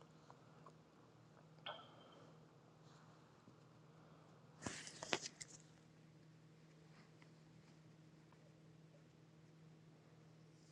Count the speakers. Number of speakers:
0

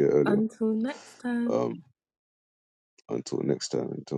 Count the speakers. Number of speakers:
2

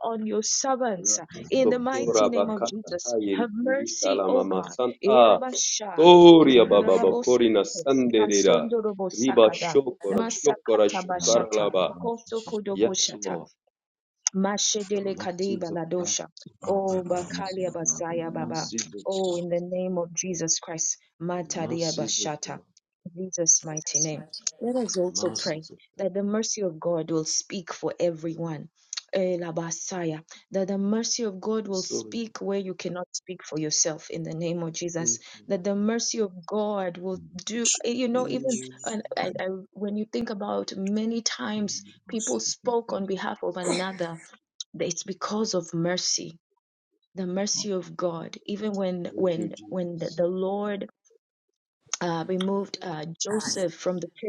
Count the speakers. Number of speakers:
2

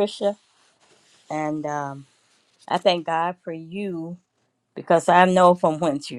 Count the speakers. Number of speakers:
1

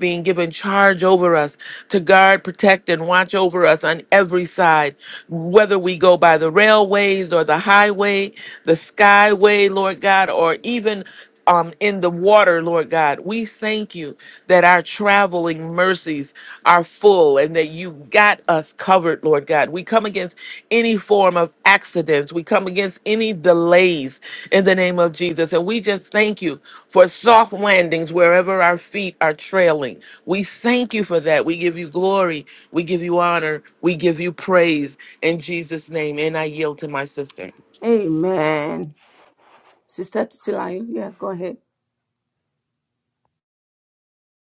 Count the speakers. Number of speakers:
2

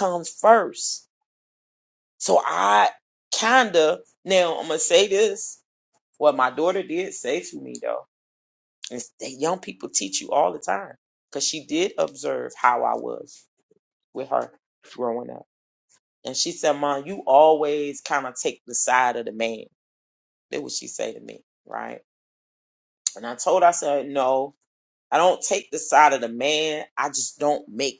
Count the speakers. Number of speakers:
1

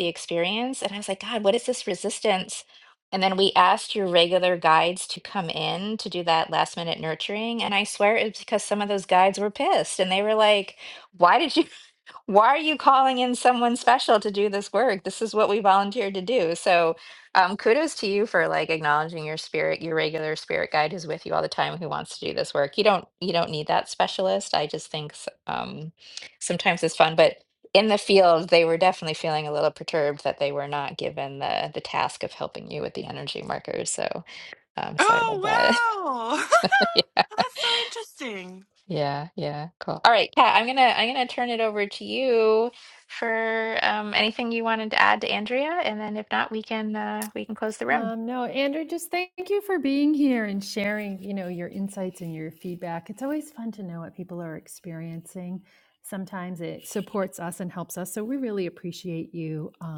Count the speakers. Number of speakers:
3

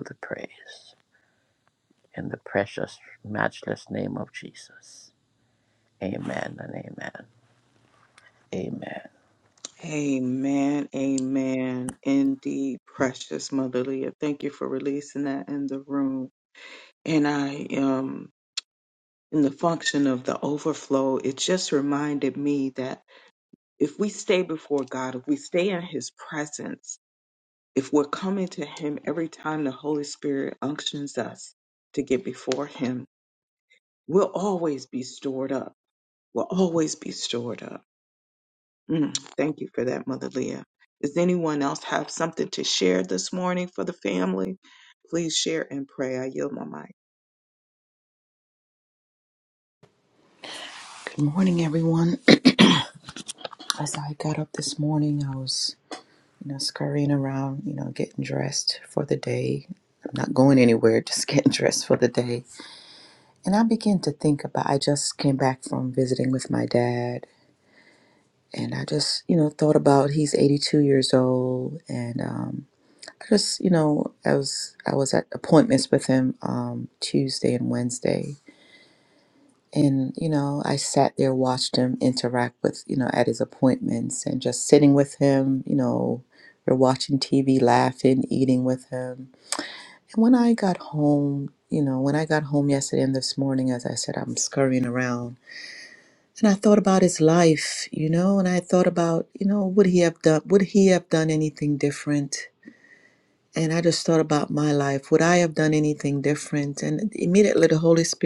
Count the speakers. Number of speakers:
3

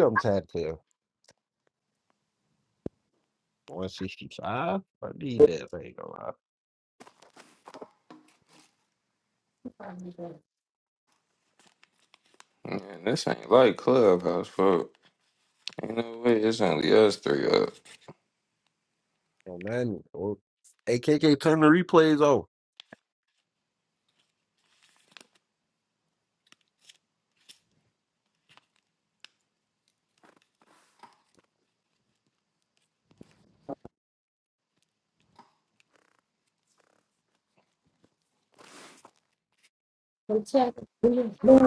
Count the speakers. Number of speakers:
3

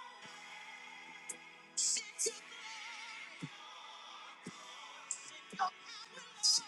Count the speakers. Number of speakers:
0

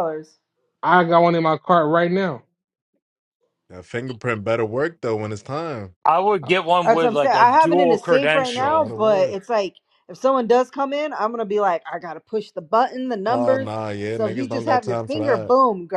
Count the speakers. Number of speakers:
4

